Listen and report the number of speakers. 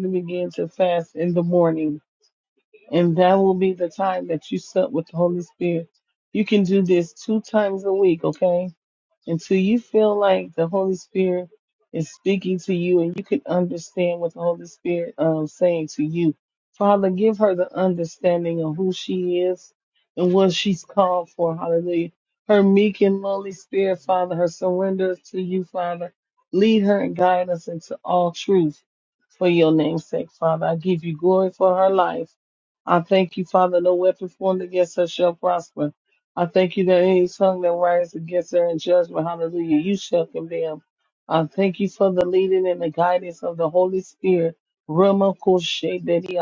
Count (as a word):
one